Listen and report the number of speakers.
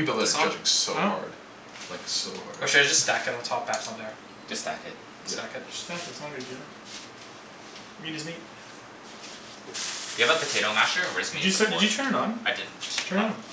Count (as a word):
four